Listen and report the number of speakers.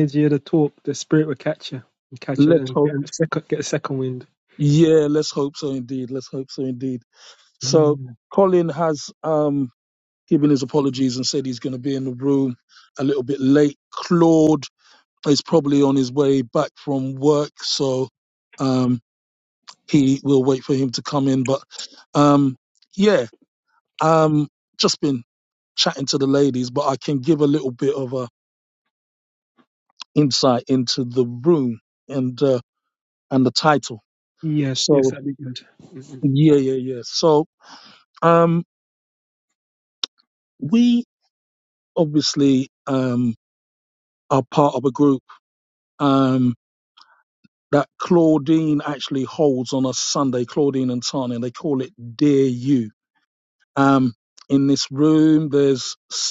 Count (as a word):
two